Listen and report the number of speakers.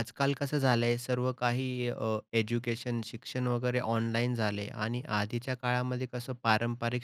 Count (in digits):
1